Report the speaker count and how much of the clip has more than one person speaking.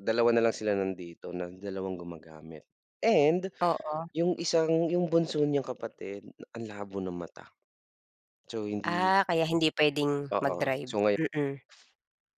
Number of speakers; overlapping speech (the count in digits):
2, about 9%